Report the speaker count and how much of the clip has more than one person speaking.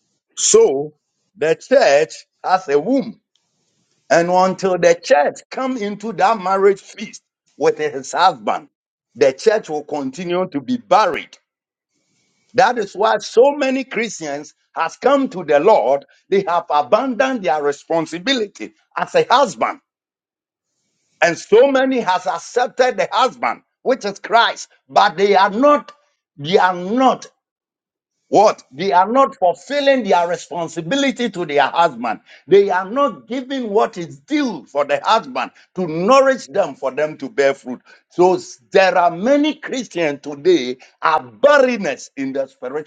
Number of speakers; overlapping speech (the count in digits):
1, no overlap